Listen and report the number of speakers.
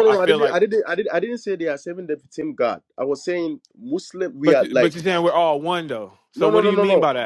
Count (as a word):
two